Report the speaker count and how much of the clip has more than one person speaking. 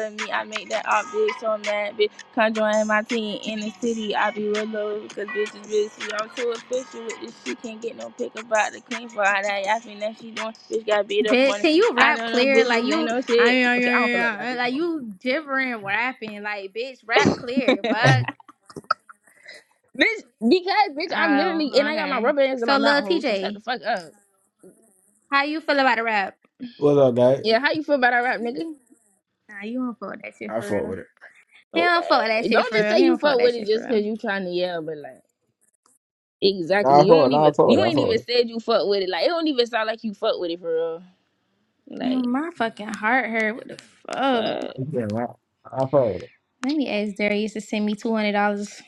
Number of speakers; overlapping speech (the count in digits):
3, about 21%